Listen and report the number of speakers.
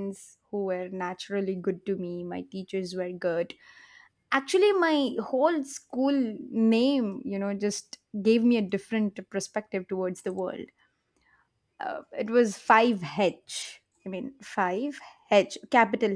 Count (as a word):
one